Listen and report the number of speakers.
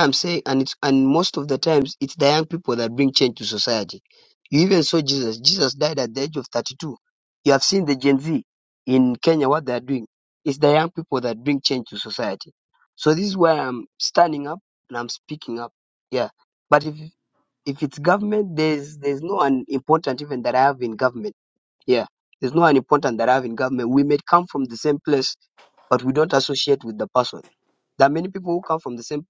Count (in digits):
1